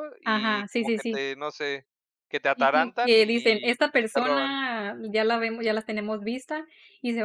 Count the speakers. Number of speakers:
two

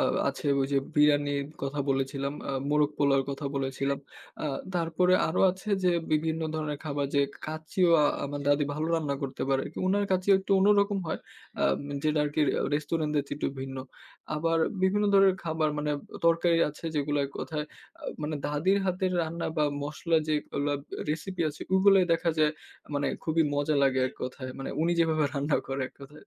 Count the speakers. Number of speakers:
one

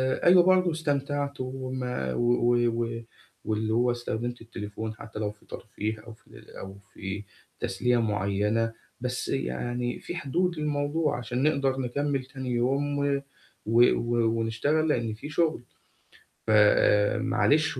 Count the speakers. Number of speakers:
one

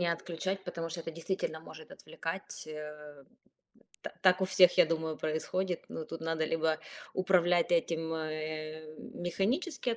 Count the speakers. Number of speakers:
one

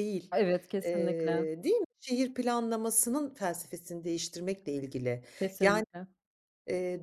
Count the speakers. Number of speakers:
two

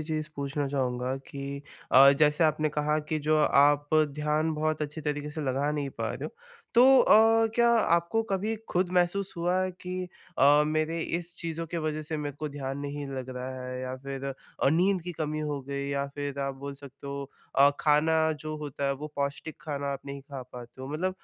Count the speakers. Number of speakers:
one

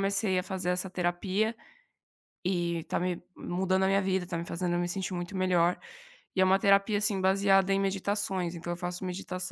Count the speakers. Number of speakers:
one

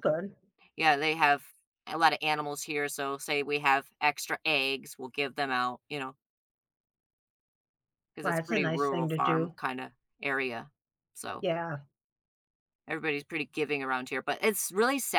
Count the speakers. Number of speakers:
two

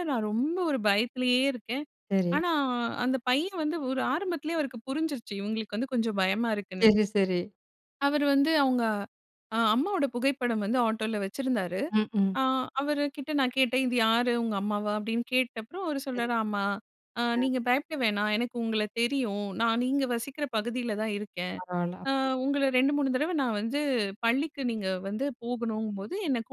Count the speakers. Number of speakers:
two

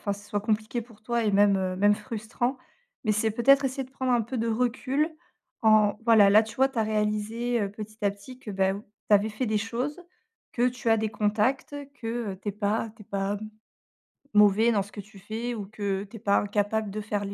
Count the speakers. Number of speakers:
one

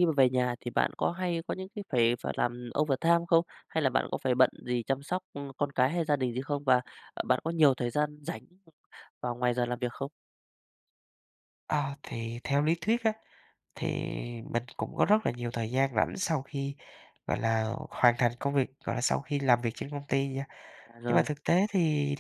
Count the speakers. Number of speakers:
two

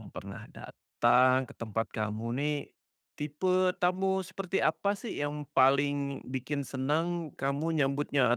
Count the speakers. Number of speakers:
one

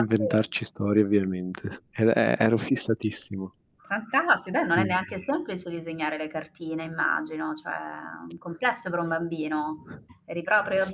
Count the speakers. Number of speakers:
two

